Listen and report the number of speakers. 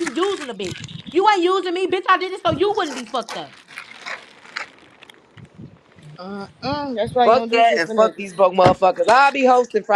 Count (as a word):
three